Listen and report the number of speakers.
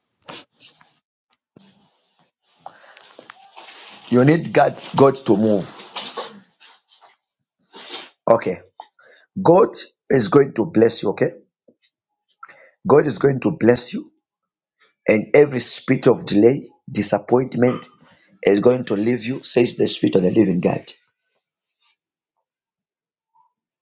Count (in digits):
1